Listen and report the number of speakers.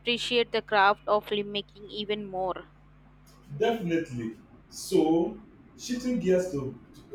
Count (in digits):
2